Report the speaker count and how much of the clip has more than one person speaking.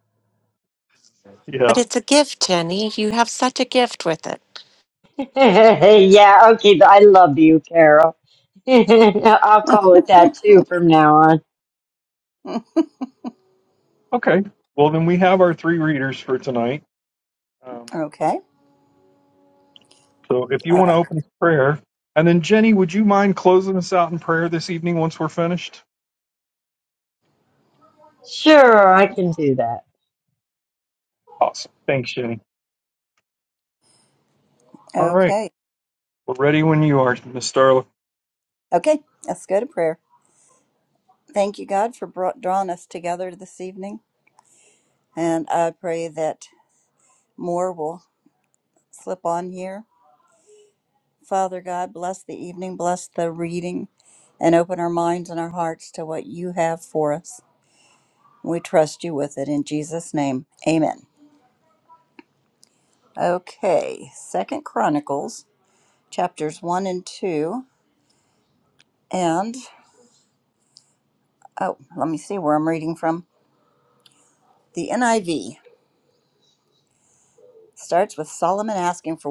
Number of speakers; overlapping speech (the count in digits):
4, about 1%